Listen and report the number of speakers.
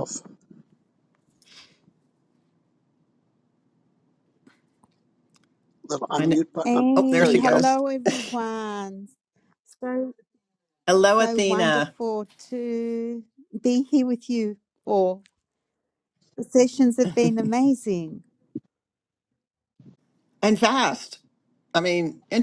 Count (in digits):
3